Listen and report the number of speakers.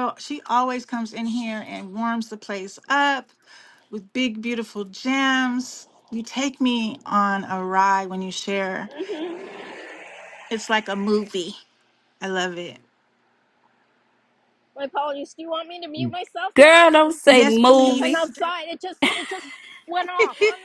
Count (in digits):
3